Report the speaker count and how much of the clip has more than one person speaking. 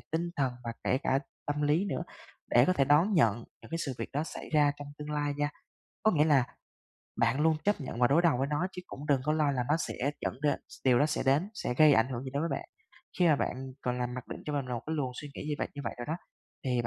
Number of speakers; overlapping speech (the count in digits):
1, no overlap